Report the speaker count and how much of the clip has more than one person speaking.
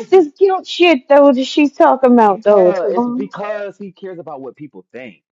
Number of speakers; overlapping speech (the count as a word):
two, about 21%